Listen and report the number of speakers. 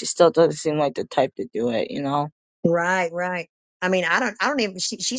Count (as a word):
two